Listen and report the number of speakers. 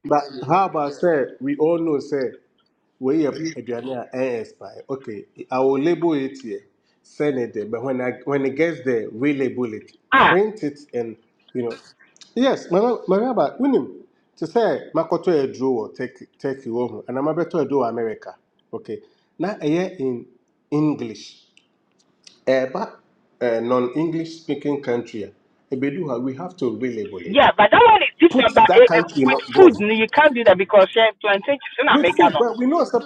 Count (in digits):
2